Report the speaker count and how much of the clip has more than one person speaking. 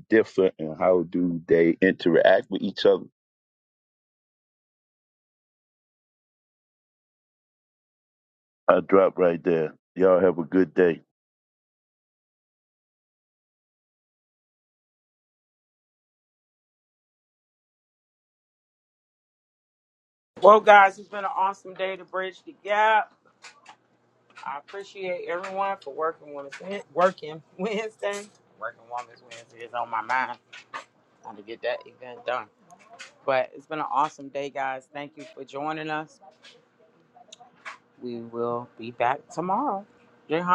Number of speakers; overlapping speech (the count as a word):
two, no overlap